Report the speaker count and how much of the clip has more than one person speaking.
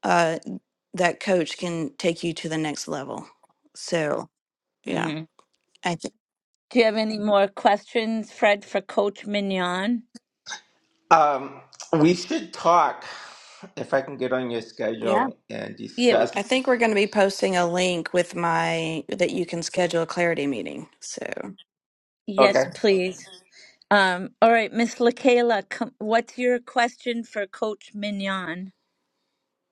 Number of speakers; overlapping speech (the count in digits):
3, about 4%